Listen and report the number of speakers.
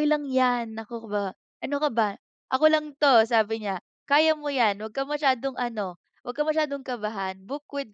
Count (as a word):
one